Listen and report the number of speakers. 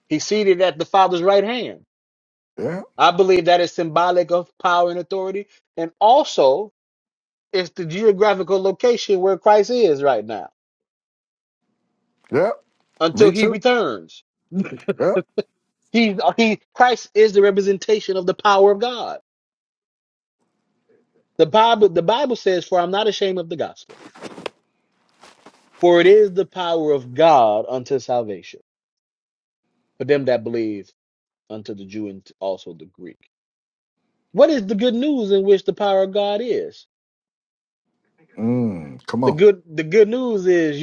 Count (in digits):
2